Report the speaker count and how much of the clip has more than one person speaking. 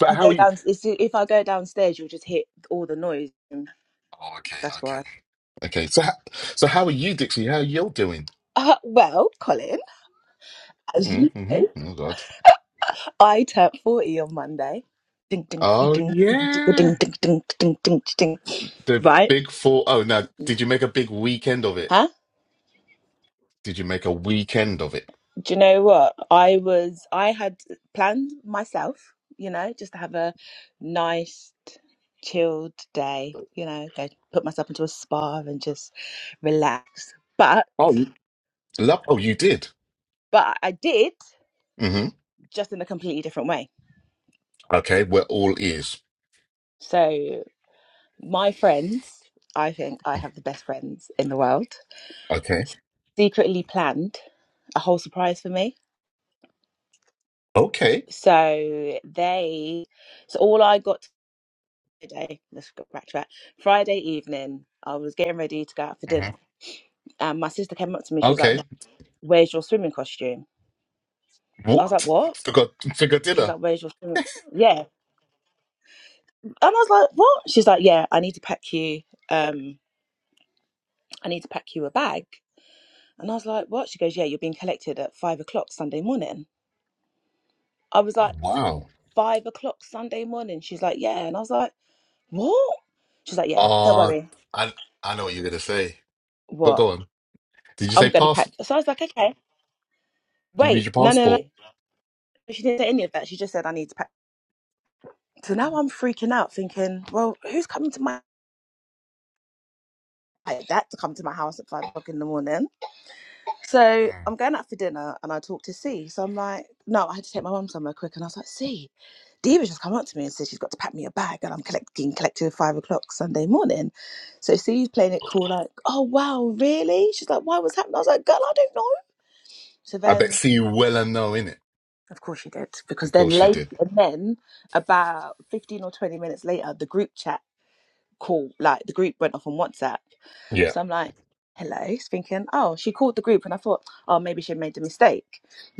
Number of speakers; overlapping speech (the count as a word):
two, about 5%